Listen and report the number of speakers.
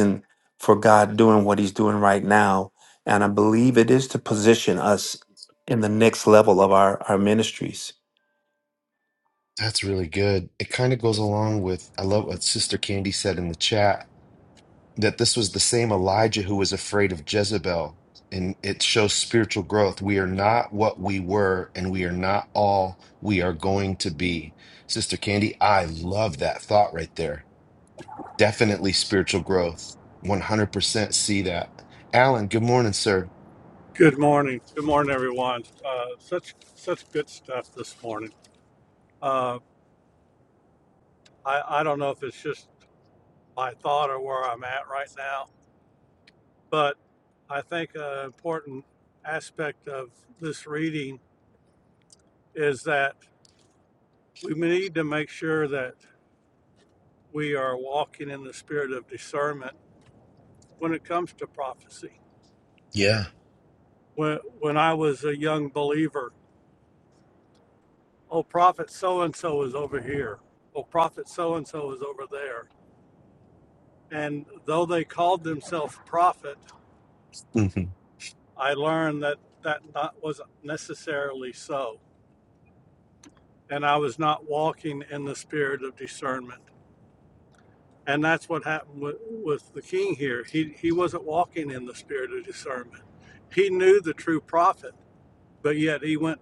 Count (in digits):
3